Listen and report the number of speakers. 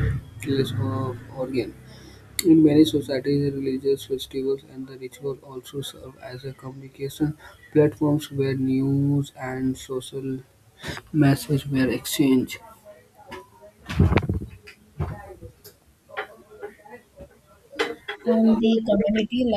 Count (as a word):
two